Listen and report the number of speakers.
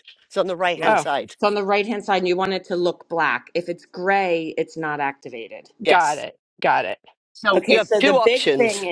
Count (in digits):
3